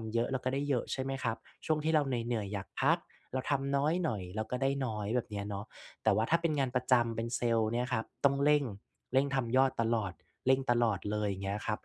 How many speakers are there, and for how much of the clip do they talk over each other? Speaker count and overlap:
one, no overlap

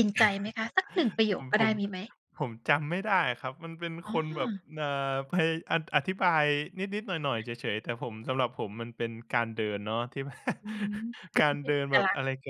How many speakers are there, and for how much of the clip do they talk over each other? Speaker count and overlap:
two, about 13%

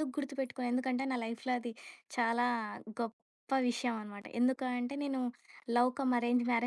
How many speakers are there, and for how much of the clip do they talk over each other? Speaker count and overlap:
one, no overlap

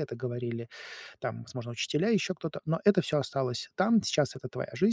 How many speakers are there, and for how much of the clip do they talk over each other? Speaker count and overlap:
one, no overlap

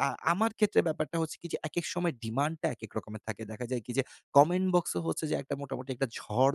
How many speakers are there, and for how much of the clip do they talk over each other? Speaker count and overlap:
one, no overlap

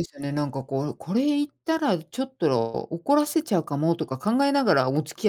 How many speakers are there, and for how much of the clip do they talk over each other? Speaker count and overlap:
one, no overlap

